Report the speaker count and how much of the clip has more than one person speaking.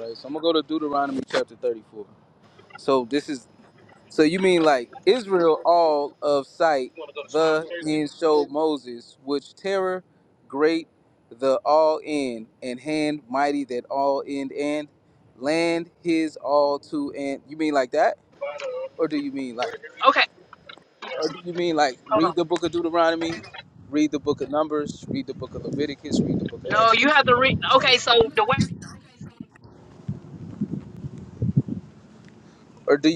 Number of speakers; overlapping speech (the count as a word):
two, about 5%